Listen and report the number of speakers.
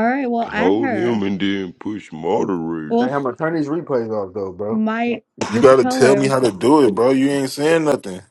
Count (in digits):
4